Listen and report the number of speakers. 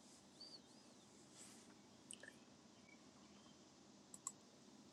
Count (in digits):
0